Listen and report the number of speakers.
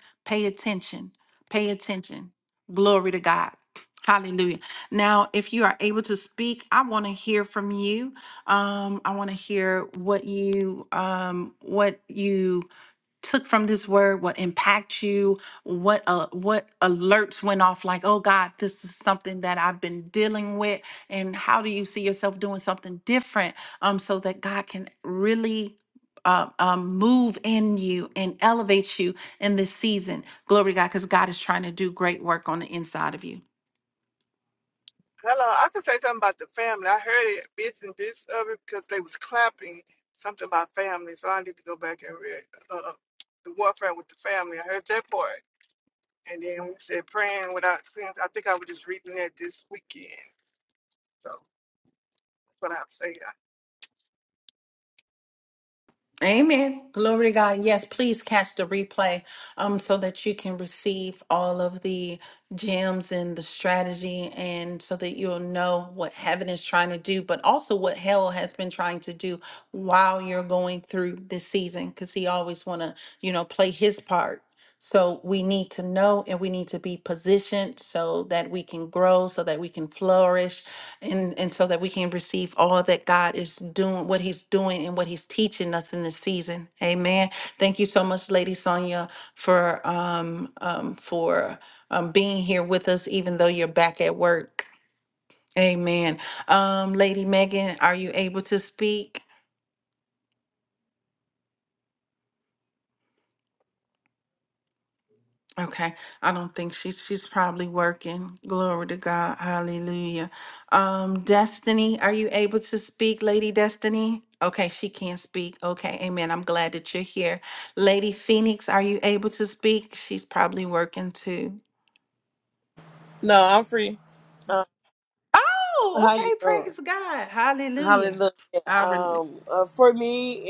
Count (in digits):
3